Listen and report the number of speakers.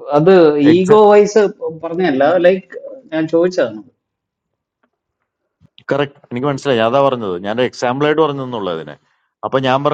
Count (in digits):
2